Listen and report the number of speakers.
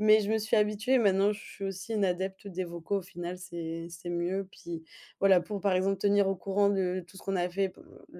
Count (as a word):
one